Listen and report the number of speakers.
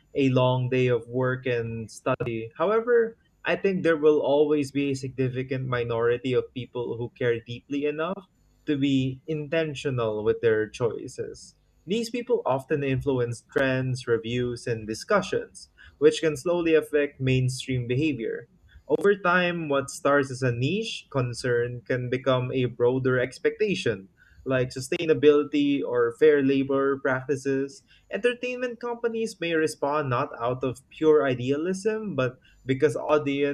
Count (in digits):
1